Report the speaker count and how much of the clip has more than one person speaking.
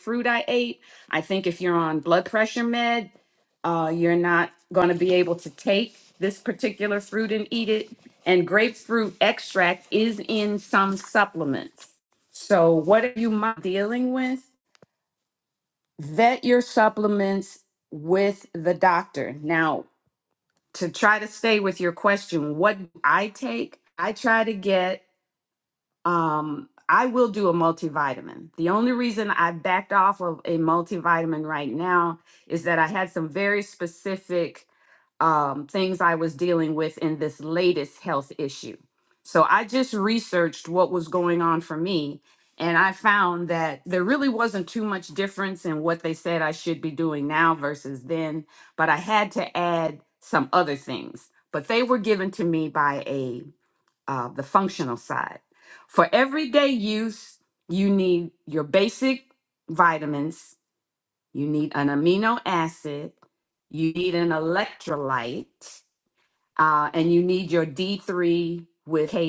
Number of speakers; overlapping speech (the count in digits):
1, no overlap